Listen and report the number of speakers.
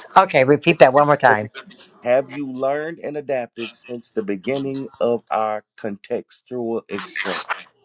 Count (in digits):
2